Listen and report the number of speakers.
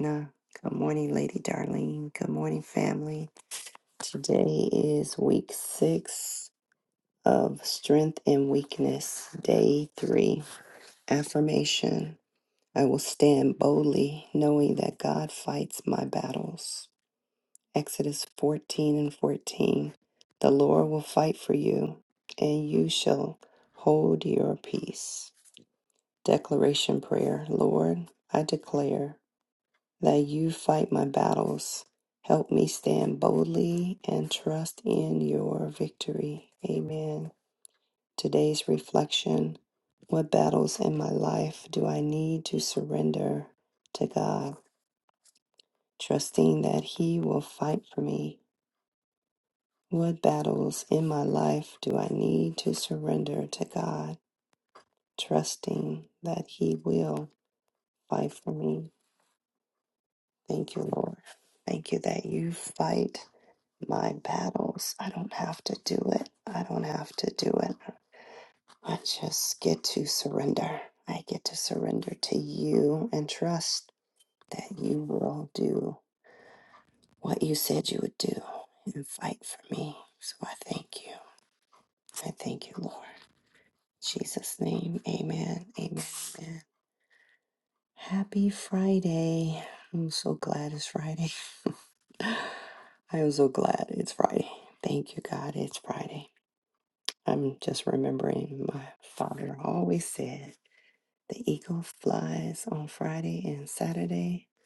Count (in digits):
1